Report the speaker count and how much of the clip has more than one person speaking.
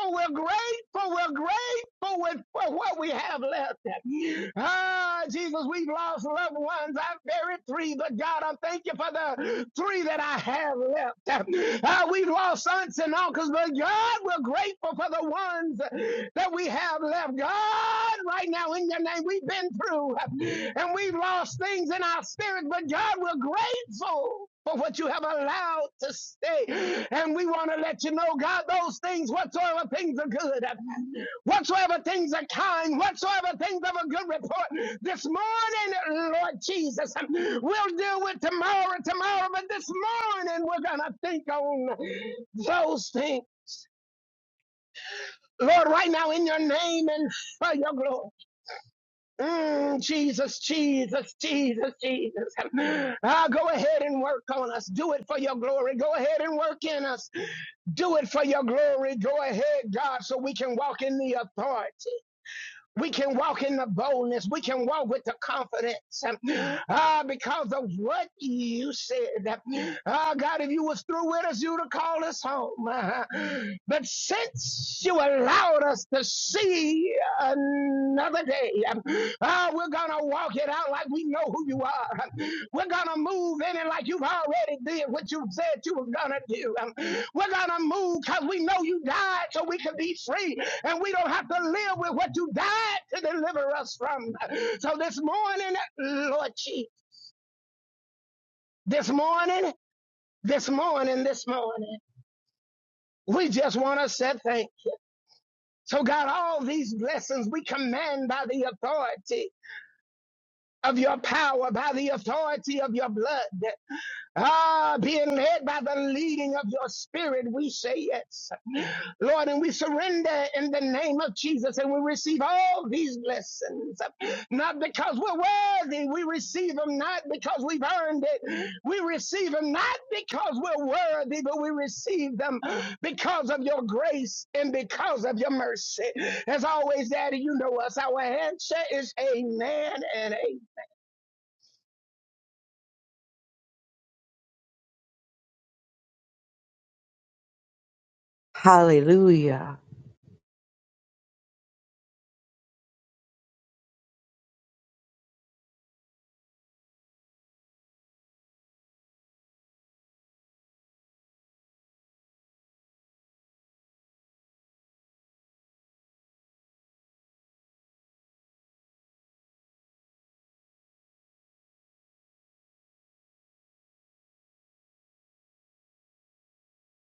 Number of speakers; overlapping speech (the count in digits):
2, no overlap